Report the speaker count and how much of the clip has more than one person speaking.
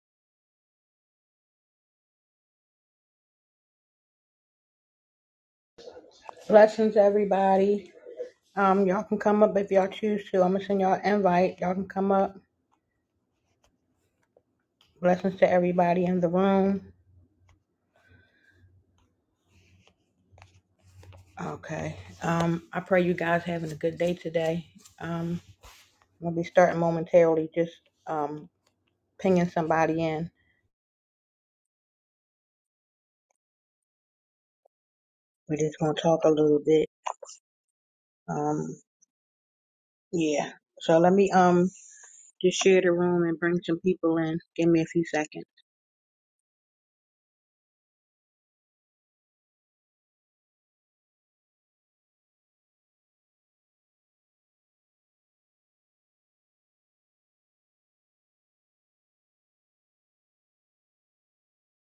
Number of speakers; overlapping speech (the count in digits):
1, no overlap